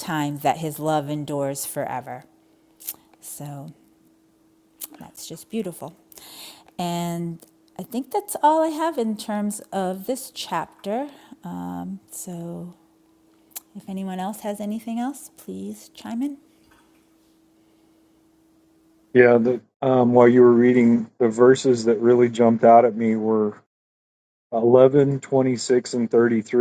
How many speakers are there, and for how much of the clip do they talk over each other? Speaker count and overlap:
2, no overlap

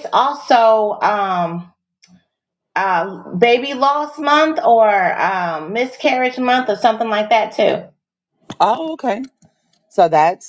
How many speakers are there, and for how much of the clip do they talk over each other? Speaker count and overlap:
2, no overlap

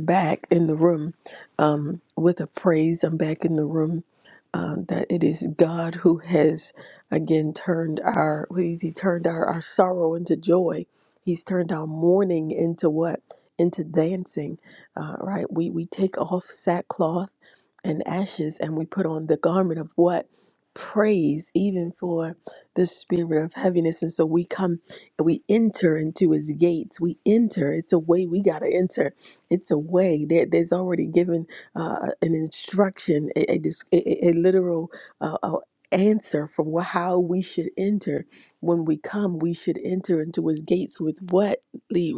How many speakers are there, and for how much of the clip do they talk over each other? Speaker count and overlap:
1, no overlap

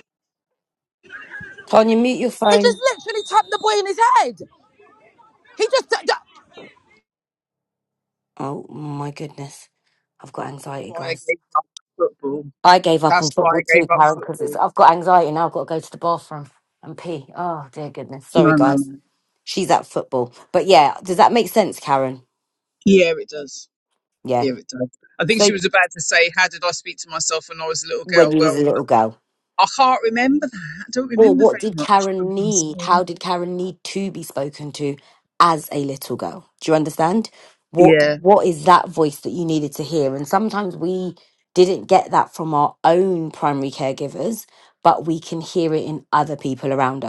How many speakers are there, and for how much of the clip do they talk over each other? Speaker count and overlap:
3, about 12%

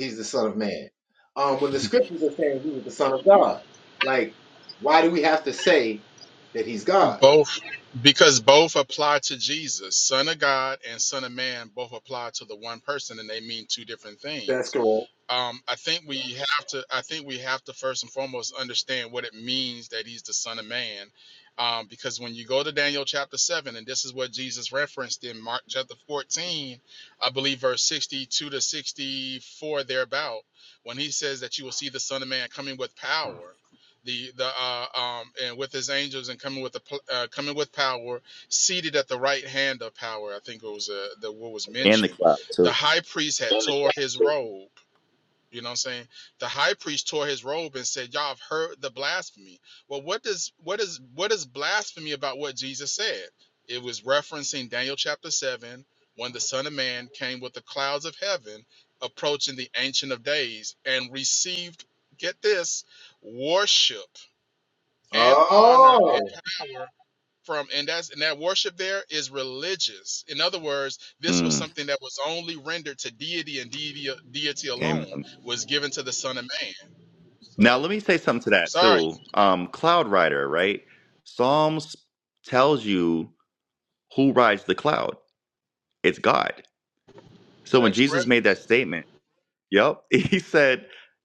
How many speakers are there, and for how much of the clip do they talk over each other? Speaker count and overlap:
3, about 4%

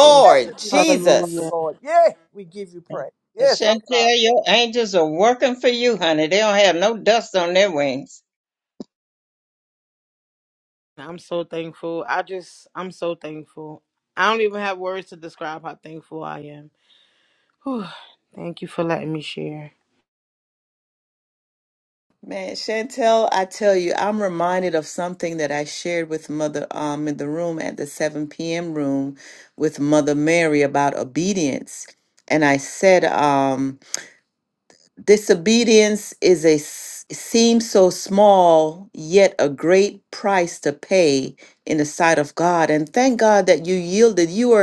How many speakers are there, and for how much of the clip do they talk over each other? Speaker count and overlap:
4, about 5%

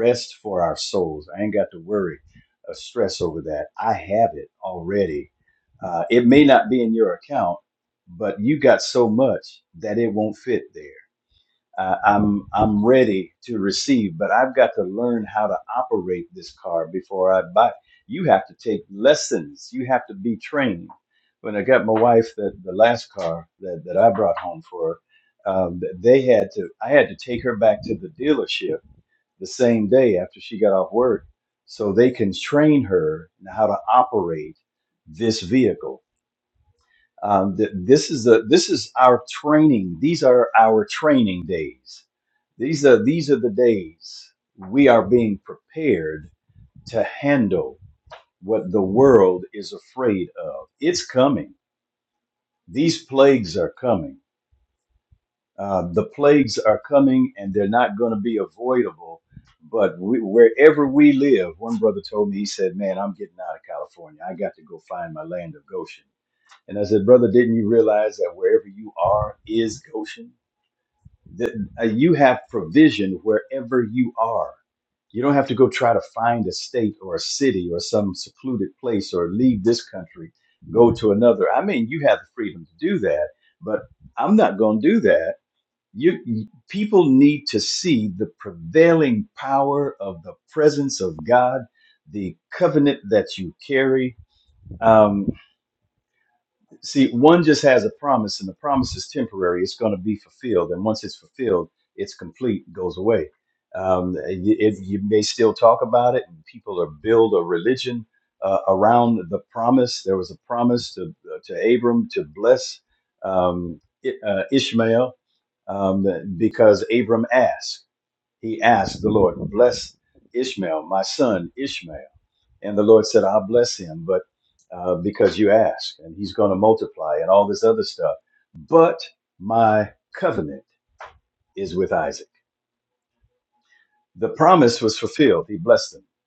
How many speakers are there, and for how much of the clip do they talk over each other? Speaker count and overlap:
1, no overlap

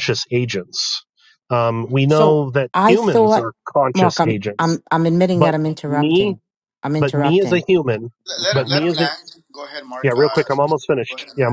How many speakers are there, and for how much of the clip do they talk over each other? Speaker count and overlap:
3, about 37%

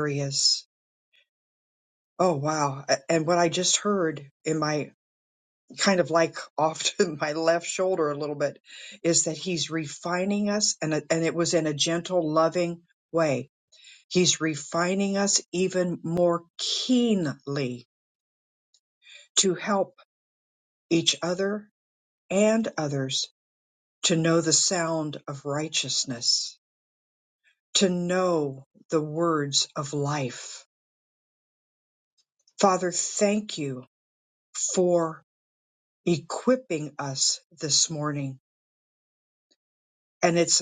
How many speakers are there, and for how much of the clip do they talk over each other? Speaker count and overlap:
1, no overlap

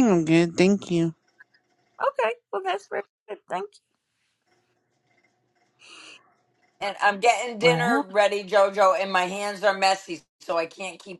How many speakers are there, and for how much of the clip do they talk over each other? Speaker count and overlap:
3, about 4%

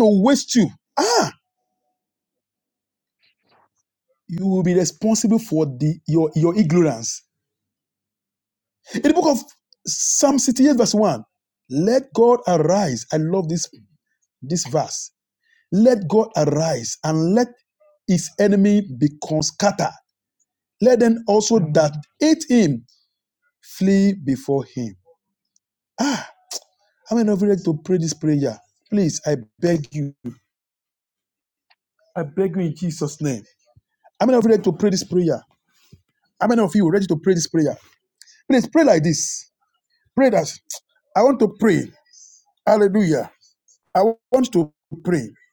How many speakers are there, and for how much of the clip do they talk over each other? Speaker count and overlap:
1, no overlap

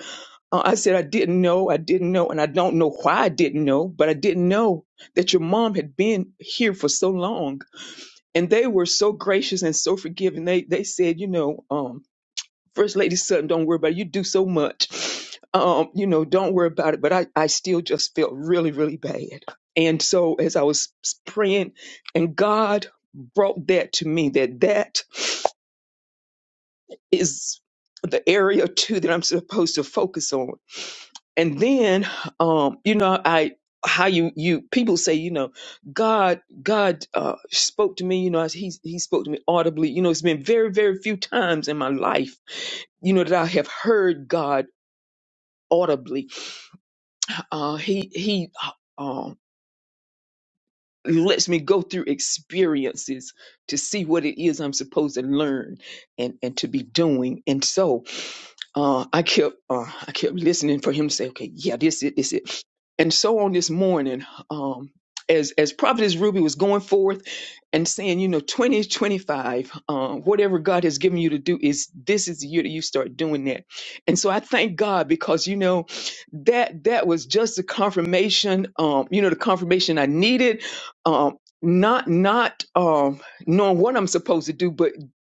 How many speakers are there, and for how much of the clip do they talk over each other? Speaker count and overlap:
1, no overlap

